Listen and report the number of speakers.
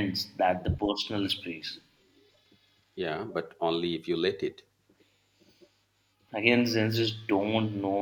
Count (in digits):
2